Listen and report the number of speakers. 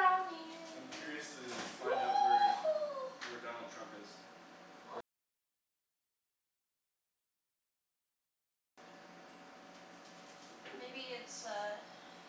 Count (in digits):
2